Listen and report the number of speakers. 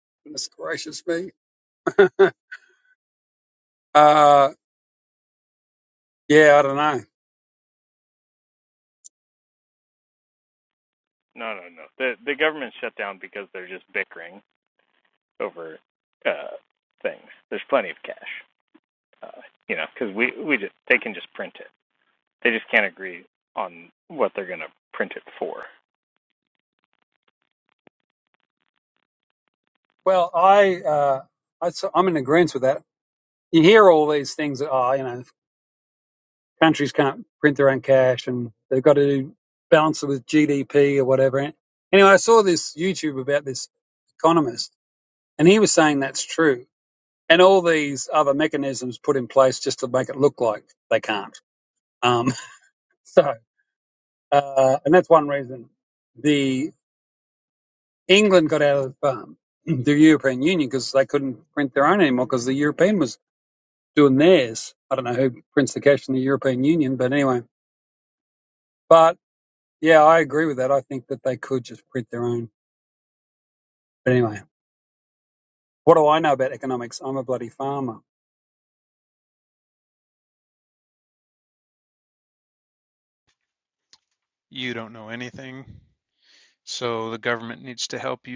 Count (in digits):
3